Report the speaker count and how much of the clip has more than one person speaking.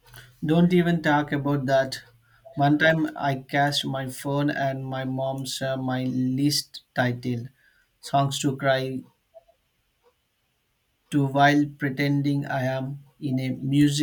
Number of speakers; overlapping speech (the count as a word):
one, no overlap